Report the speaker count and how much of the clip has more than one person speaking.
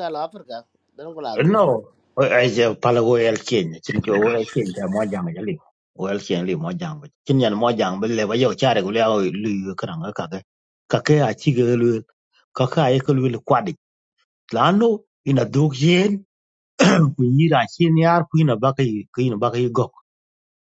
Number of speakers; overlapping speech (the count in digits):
2, about 1%